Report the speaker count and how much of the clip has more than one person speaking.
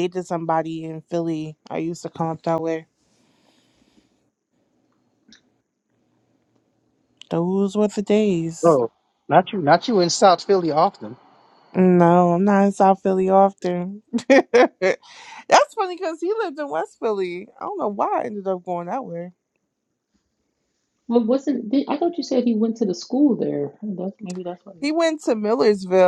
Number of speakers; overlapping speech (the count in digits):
3, no overlap